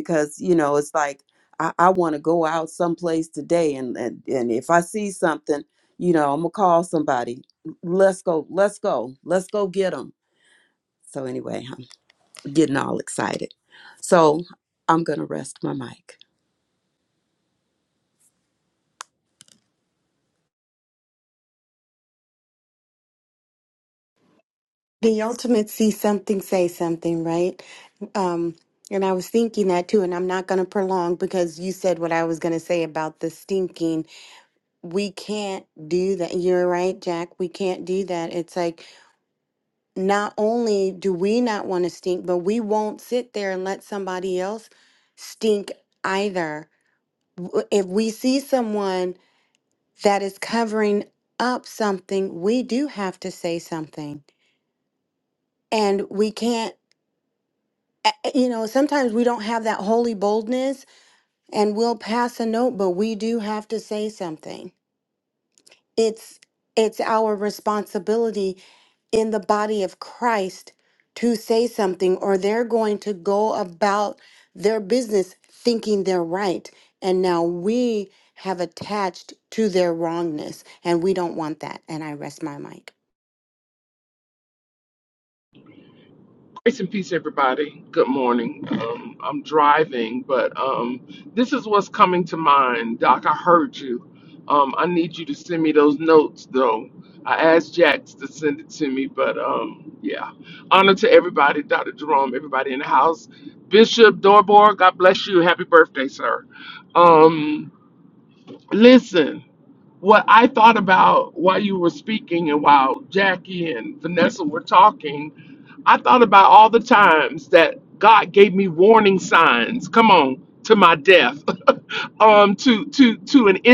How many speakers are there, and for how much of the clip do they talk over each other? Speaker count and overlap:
3, no overlap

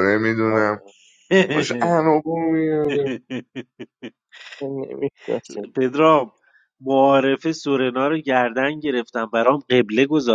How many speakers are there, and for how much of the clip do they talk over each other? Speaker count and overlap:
3, about 3%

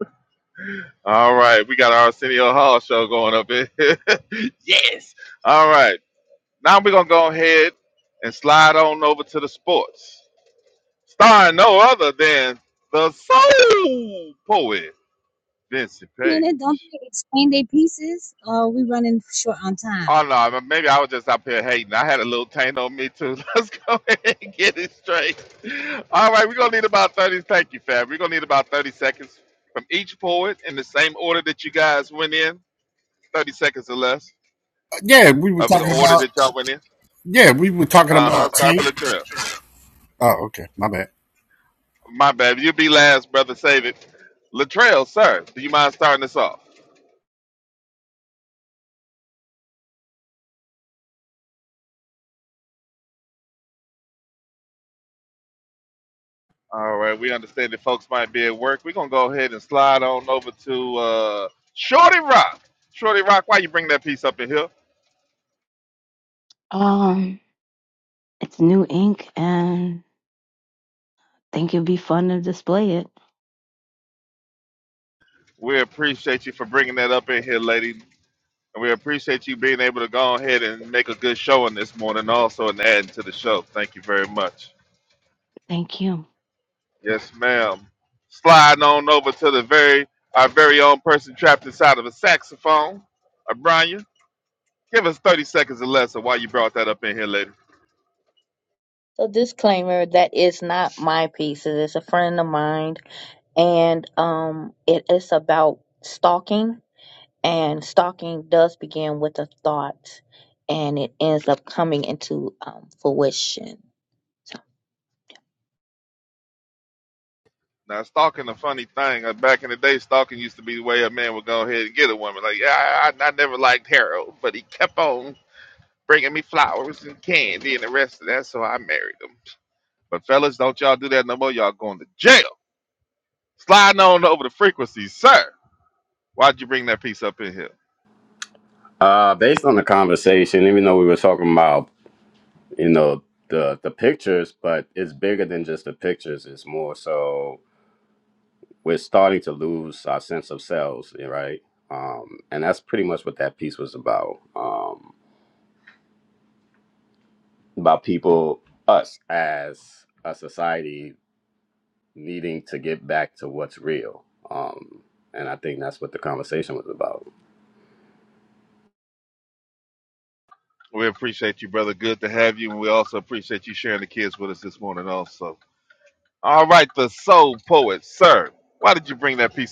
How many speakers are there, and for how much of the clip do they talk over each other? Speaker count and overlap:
6, about 1%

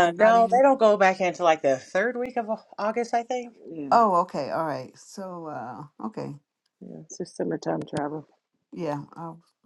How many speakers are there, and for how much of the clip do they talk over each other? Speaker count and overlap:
3, about 7%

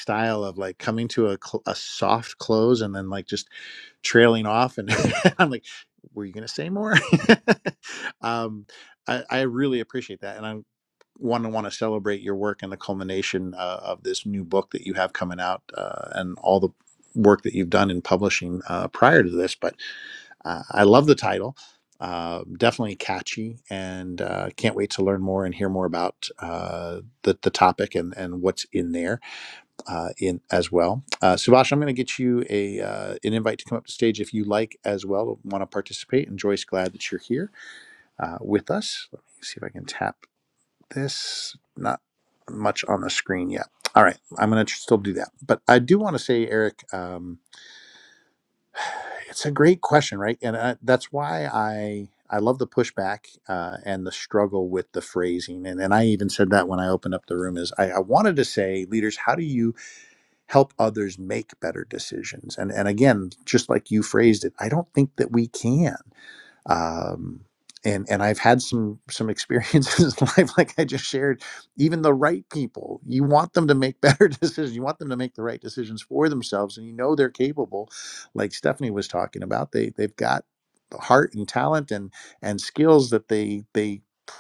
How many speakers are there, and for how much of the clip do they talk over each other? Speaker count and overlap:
1, no overlap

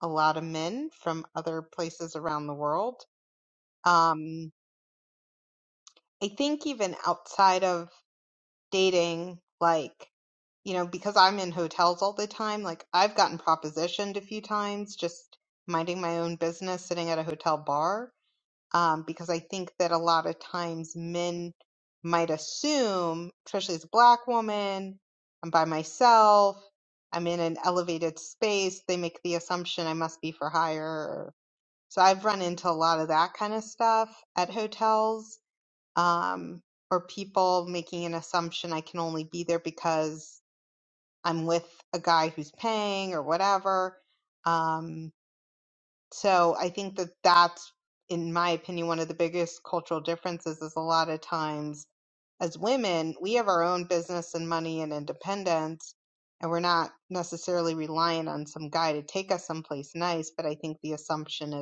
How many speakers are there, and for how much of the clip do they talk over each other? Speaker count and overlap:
1, no overlap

